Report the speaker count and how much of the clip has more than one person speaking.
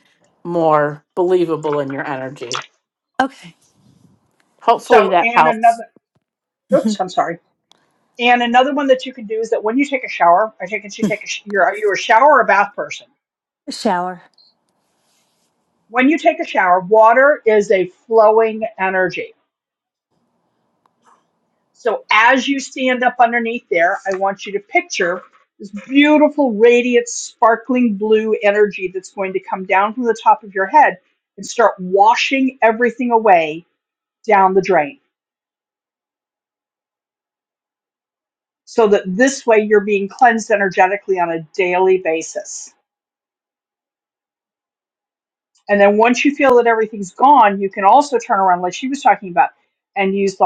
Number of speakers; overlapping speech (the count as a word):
three, about 2%